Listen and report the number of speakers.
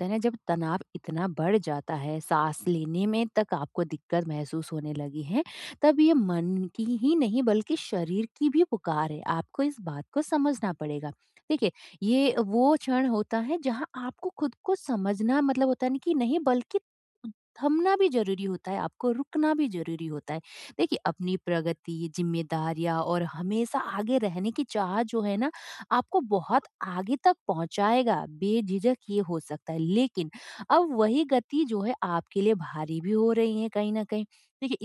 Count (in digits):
1